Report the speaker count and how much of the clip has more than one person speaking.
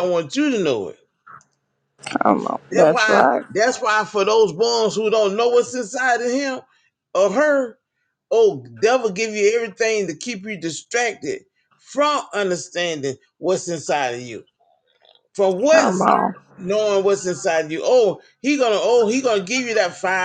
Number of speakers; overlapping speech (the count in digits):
2, about 5%